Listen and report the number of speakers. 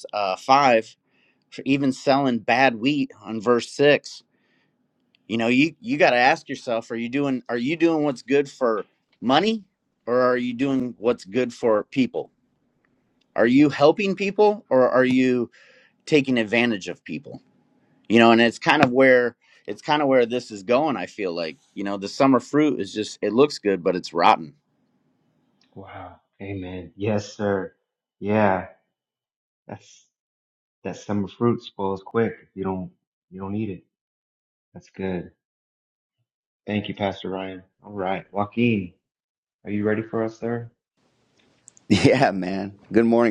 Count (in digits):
3